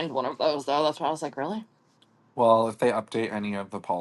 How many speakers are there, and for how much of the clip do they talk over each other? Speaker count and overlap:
2, no overlap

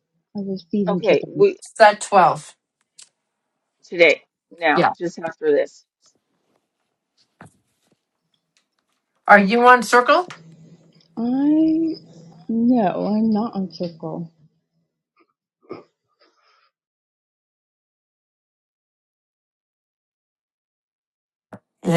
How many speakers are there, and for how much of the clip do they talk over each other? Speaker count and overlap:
3, about 3%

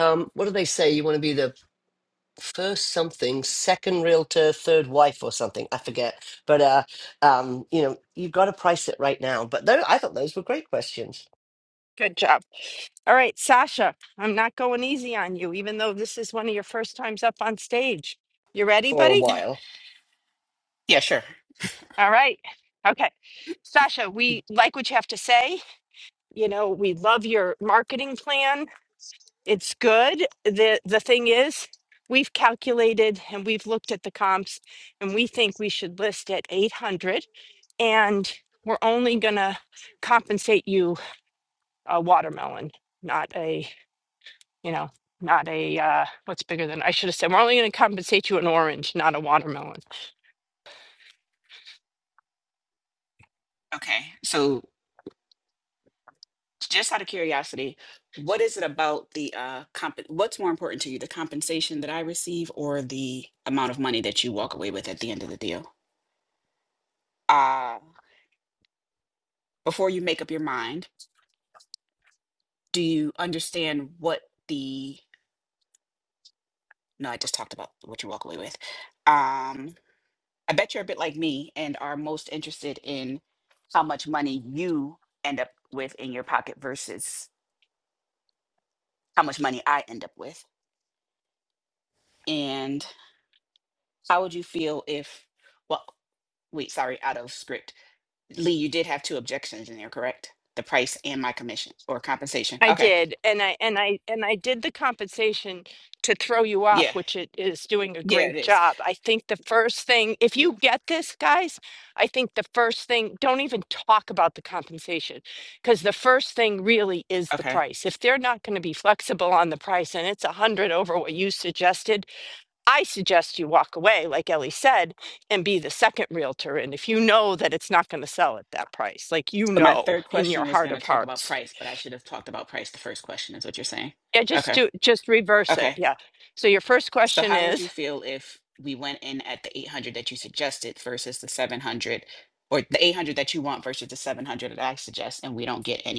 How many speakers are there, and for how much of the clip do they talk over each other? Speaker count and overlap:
3, about 3%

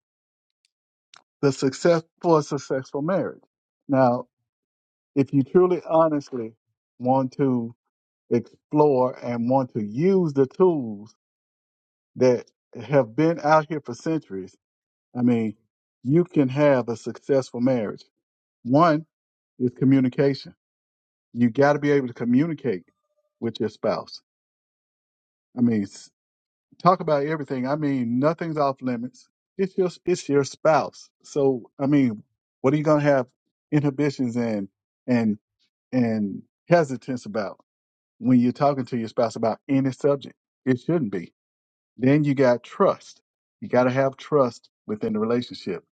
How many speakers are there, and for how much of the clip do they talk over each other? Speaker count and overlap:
1, no overlap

